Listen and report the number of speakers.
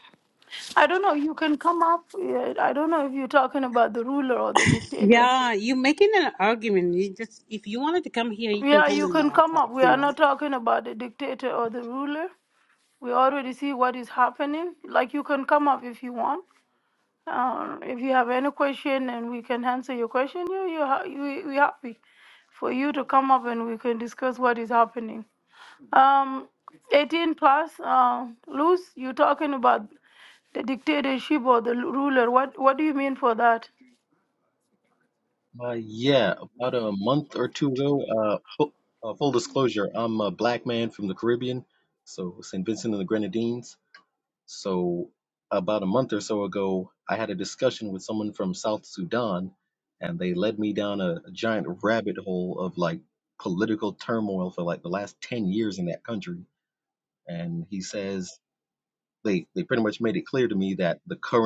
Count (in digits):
3